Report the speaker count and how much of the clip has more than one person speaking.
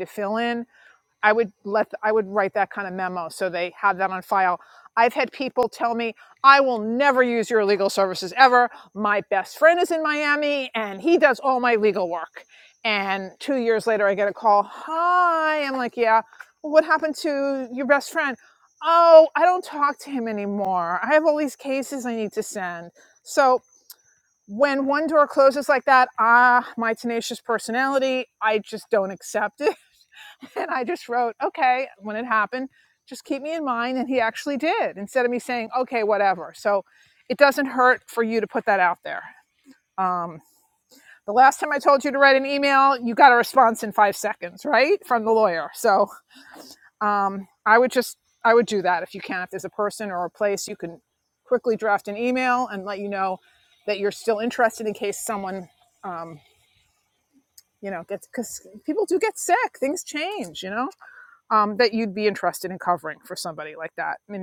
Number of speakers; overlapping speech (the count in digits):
1, no overlap